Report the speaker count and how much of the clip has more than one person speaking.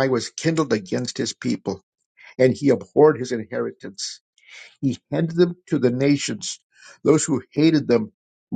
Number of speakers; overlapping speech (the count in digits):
1, no overlap